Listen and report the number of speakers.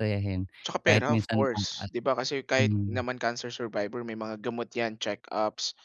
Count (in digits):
2